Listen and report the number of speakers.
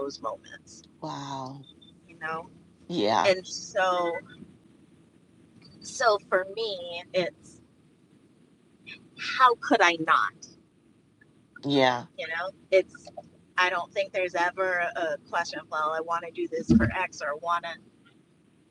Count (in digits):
2